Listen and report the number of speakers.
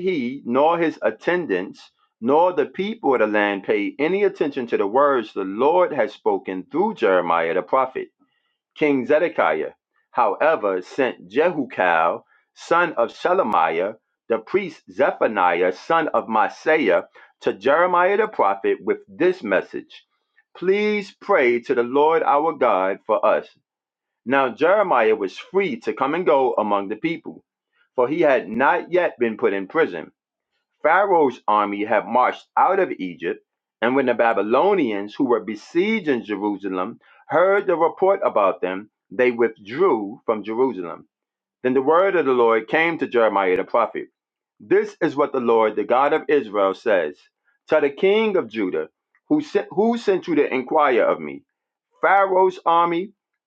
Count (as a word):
one